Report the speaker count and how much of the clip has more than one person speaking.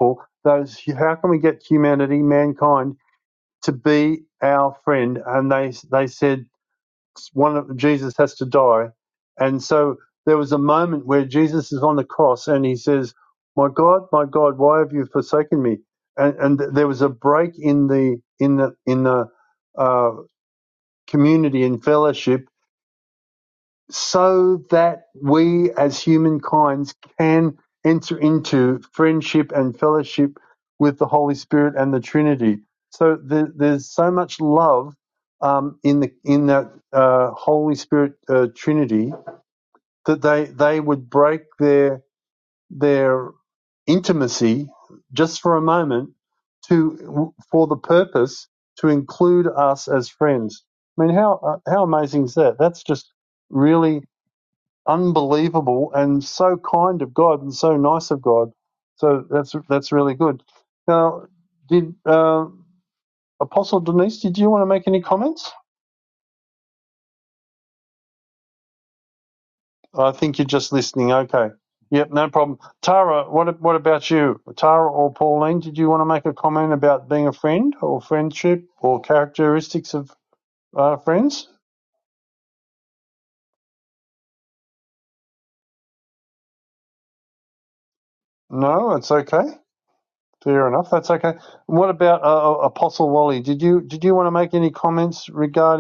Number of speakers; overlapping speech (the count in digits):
1, no overlap